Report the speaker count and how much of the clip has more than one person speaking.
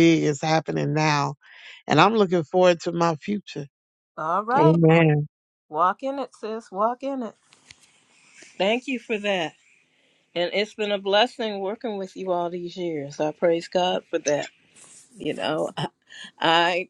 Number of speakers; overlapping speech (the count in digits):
2, about 1%